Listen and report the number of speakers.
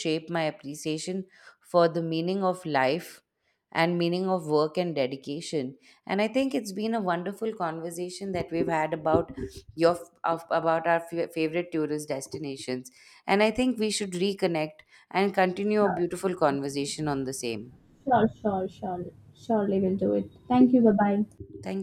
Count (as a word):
two